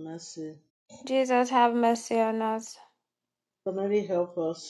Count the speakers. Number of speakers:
two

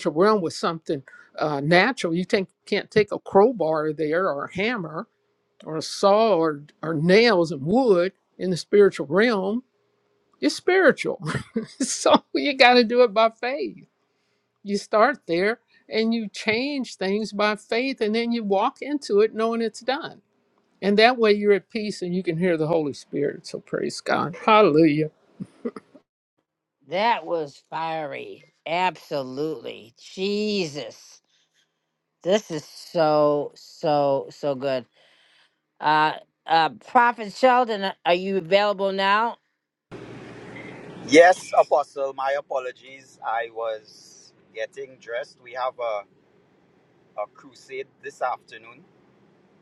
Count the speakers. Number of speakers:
three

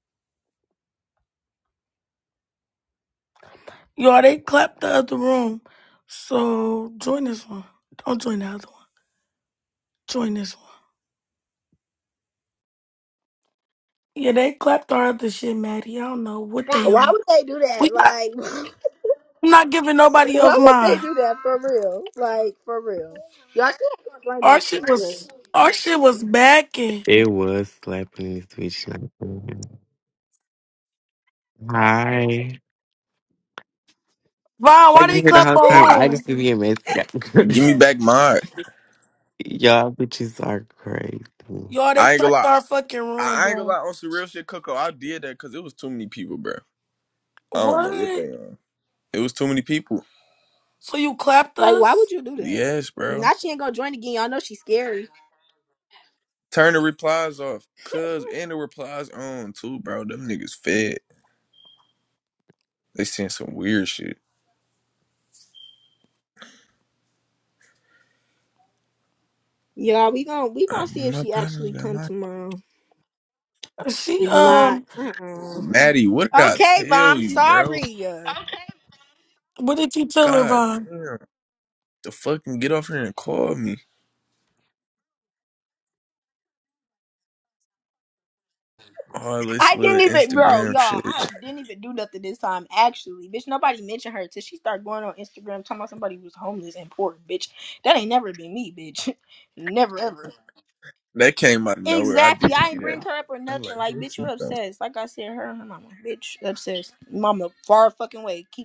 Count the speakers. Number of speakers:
four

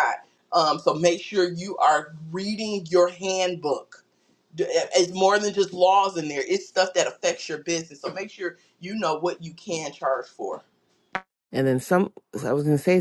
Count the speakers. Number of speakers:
two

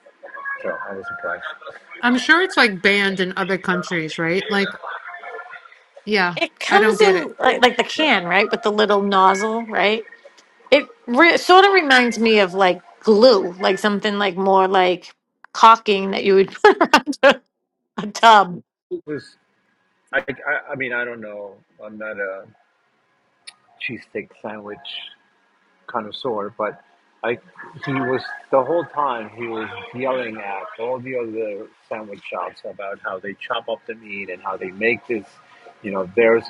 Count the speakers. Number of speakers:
three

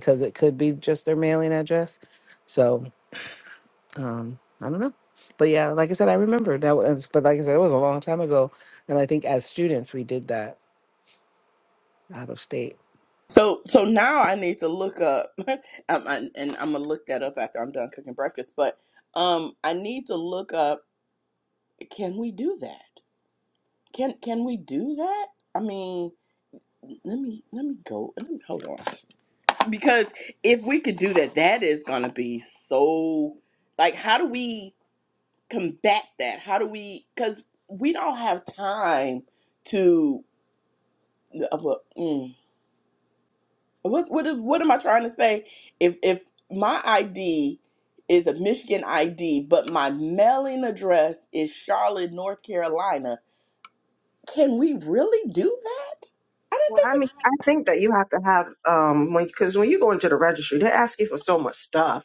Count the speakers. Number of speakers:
three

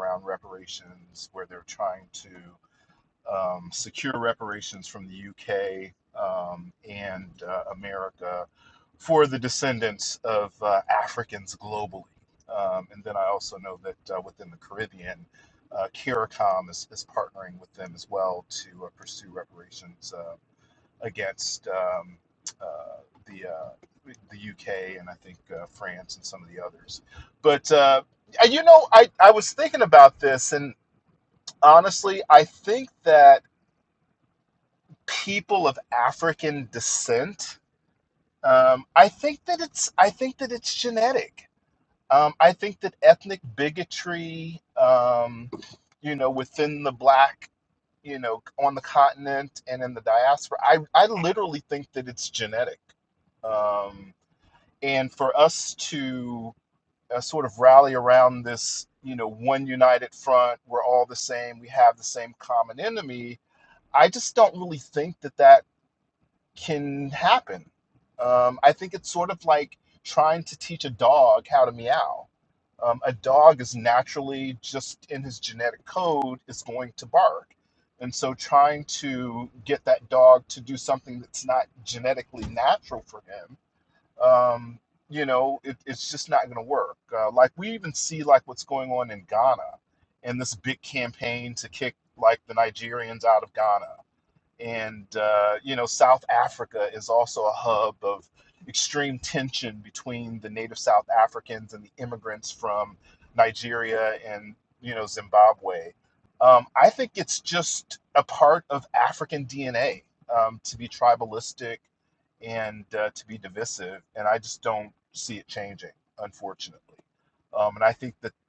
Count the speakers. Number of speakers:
one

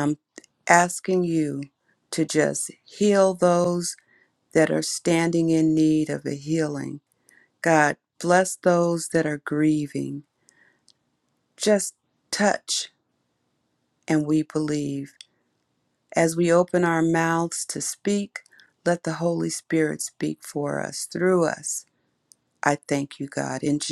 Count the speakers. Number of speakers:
one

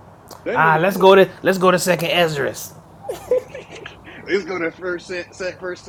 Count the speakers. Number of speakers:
two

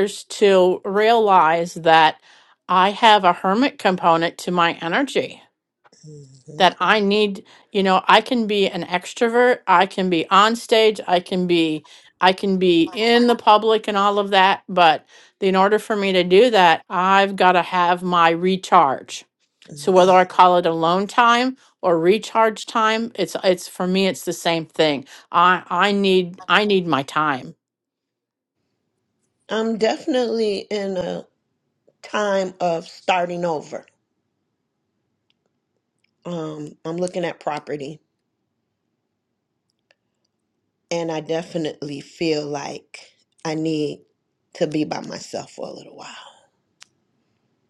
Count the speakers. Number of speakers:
two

